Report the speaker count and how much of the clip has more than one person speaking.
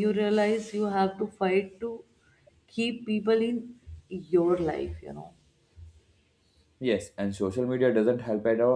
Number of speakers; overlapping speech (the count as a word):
two, no overlap